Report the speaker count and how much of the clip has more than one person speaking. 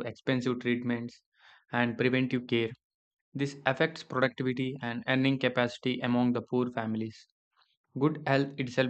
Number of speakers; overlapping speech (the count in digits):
1, no overlap